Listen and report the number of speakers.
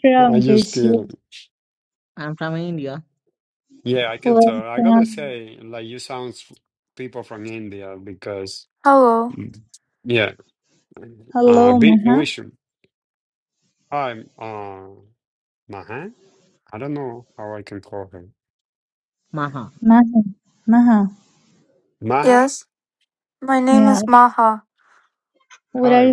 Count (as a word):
four